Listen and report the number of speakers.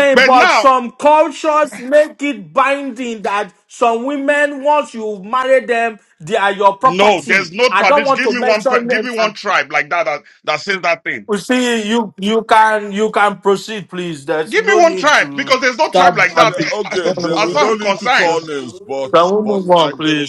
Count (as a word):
three